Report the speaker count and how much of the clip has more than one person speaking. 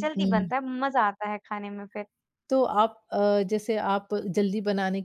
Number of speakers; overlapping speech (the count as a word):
two, about 10%